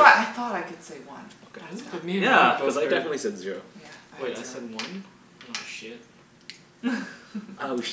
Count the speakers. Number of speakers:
3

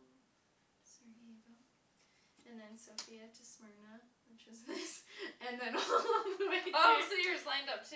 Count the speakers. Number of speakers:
2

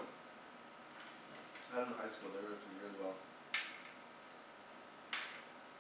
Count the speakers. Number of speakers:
1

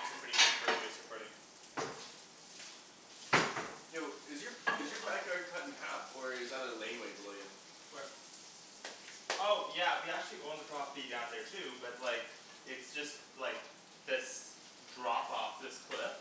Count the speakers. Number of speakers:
3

